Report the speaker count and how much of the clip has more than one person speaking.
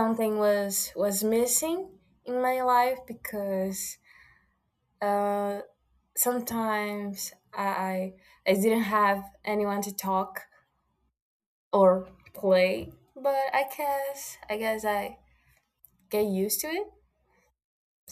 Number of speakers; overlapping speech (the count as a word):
one, no overlap